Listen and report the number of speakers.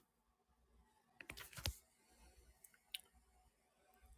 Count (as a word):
zero